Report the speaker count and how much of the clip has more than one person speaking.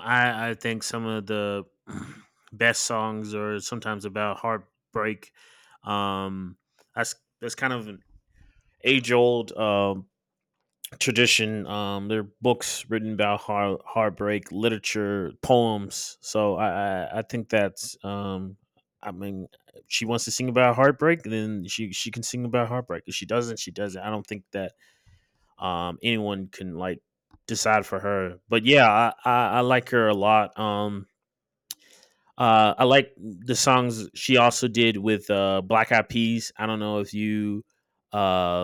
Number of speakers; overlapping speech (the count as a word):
one, no overlap